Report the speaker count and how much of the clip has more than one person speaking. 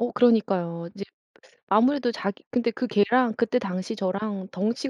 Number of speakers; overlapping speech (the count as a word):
one, no overlap